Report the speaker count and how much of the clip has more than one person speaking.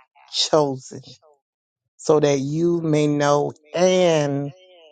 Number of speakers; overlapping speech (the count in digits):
1, no overlap